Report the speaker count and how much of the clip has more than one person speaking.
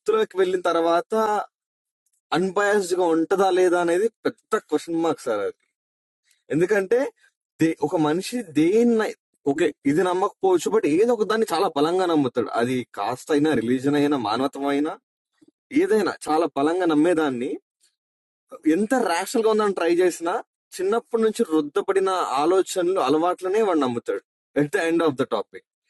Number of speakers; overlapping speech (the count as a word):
one, no overlap